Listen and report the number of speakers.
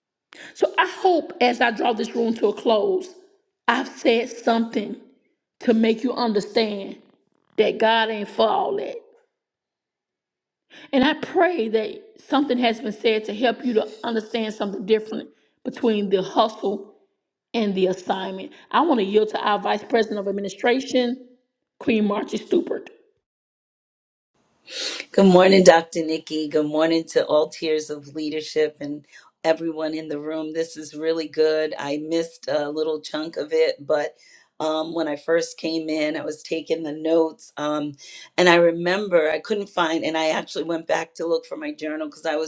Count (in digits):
2